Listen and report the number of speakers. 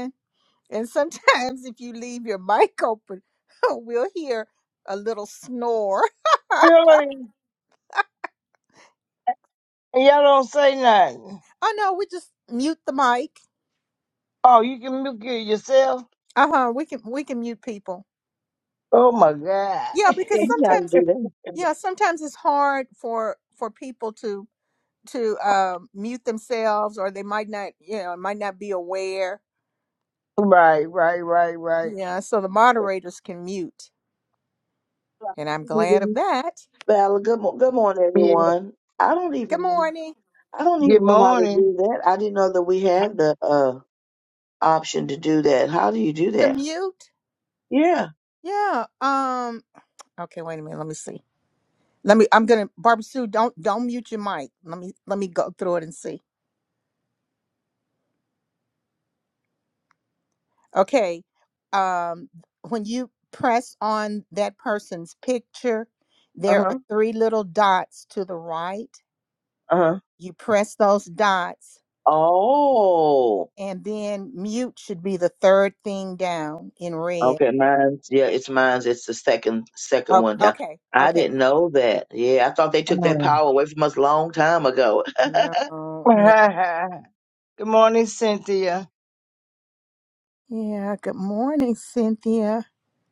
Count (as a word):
three